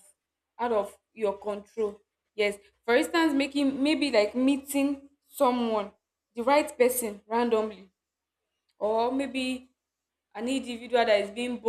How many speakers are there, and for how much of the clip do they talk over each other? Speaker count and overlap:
1, no overlap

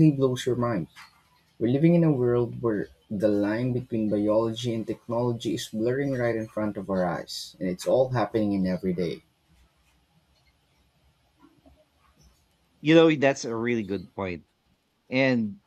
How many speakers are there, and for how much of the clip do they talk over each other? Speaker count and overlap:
2, no overlap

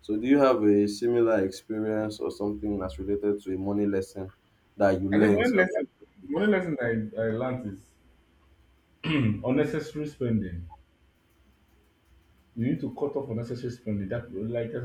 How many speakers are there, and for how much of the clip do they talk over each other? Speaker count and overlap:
2, about 3%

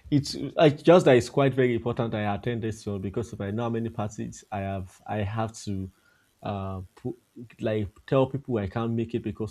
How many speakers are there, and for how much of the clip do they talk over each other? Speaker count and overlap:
1, no overlap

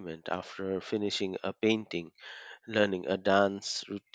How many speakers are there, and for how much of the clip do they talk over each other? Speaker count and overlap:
1, no overlap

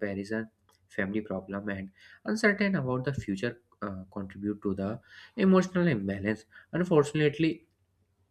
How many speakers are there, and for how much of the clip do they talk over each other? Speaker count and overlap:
1, no overlap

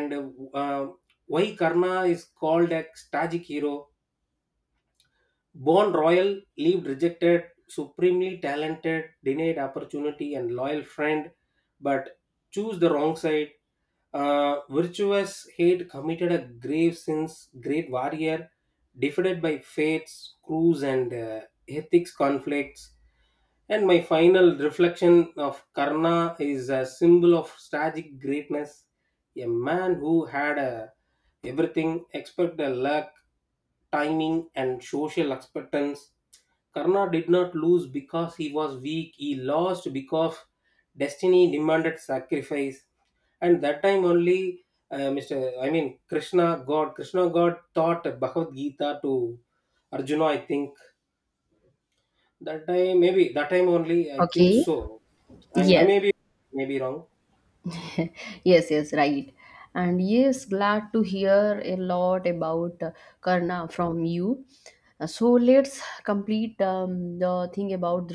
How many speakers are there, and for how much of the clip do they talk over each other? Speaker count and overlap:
2, about 1%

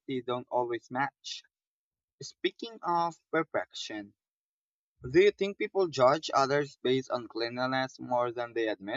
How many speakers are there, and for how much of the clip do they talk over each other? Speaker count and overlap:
1, no overlap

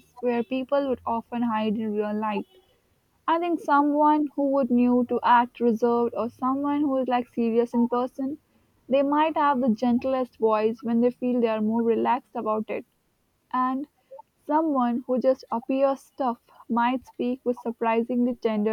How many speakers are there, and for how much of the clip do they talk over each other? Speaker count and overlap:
1, no overlap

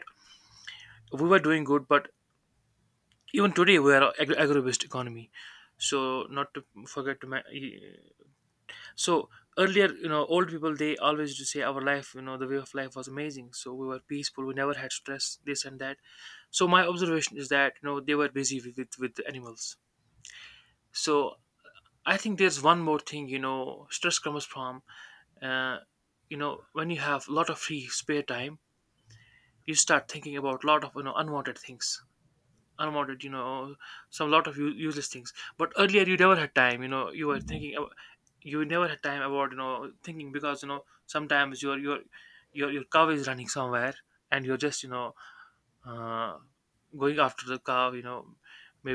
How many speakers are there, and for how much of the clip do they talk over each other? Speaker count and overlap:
1, no overlap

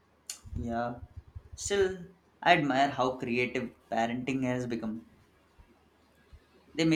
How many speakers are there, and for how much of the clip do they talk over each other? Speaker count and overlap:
1, no overlap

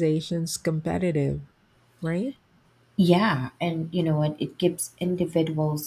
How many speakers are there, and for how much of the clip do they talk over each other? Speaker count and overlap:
2, no overlap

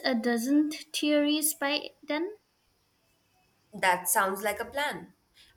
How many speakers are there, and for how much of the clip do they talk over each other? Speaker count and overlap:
2, no overlap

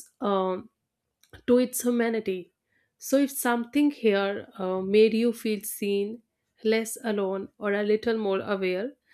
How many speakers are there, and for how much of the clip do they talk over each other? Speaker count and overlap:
1, no overlap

